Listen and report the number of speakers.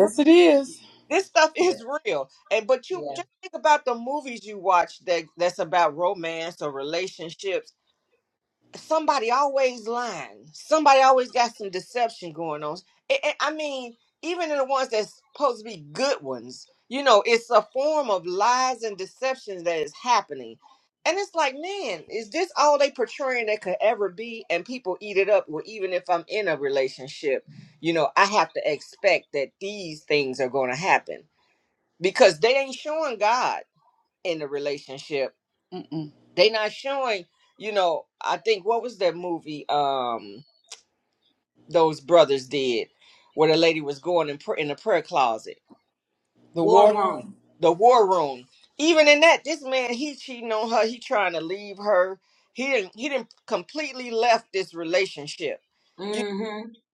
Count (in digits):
3